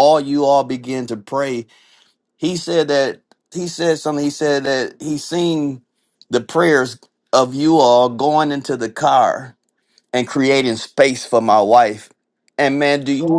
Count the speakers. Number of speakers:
1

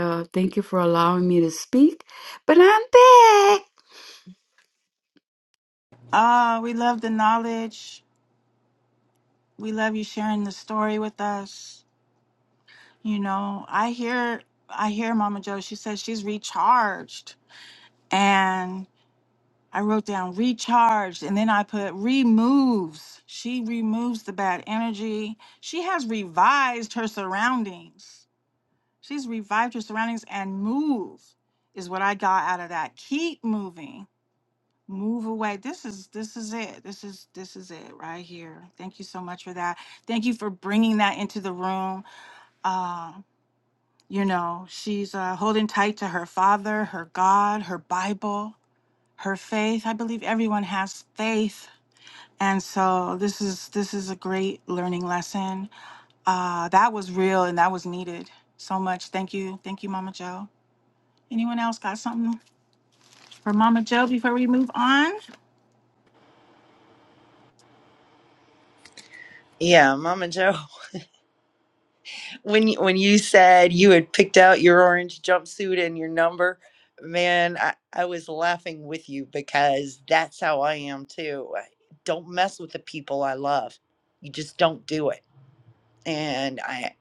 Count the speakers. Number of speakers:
3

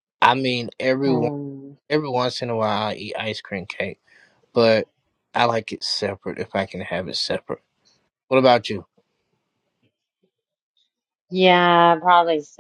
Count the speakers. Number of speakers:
2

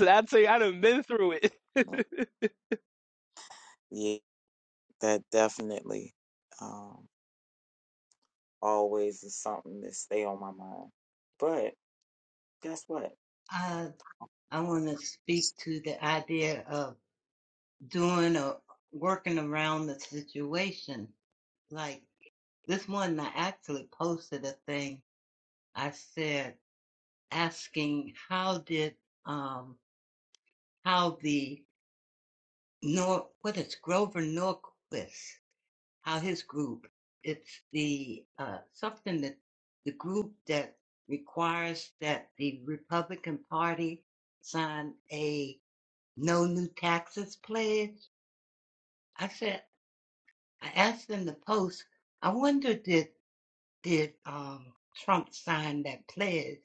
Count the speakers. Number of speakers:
3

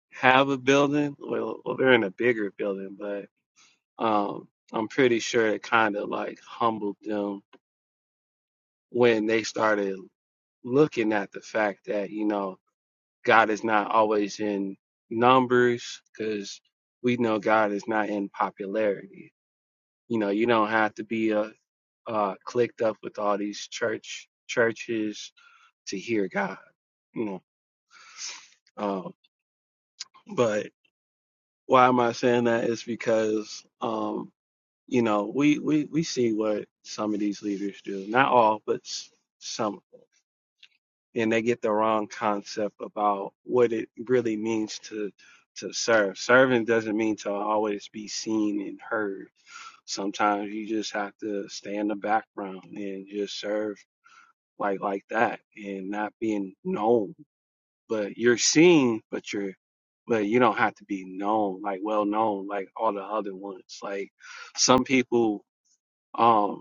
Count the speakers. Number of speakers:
1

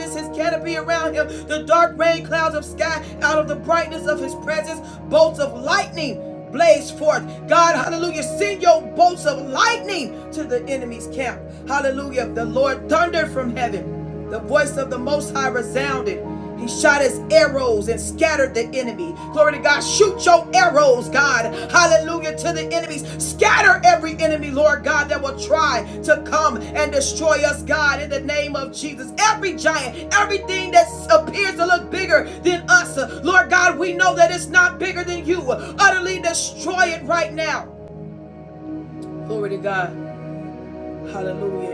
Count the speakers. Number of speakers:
1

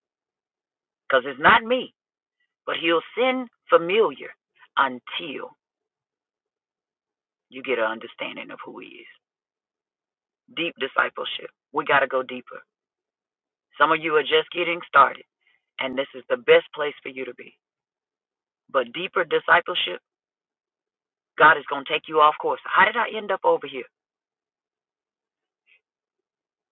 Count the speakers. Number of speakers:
1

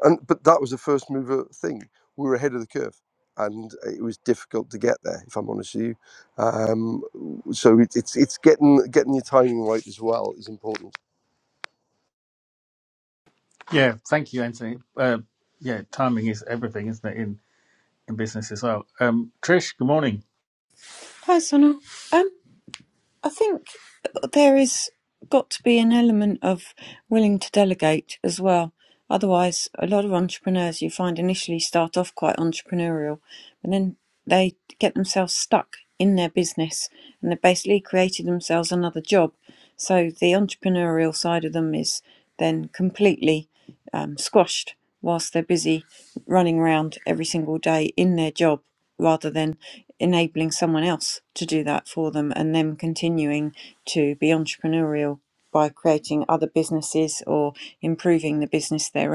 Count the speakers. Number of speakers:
3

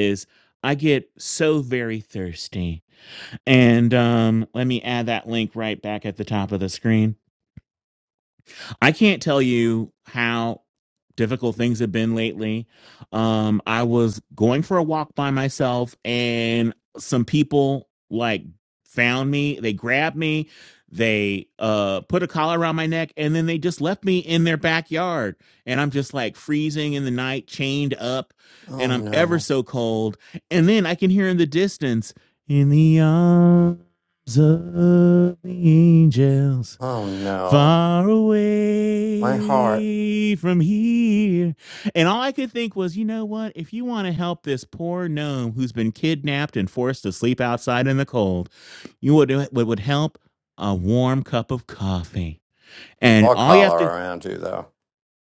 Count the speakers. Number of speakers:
2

